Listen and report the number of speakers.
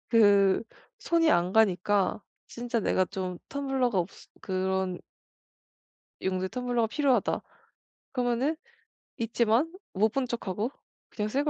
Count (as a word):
one